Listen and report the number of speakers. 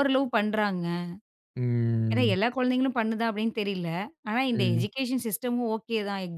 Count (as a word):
two